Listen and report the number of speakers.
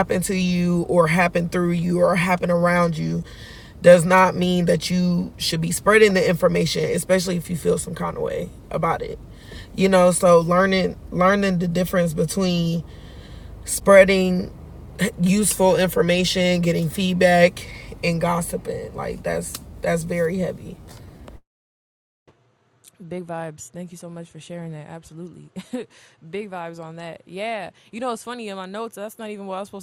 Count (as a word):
two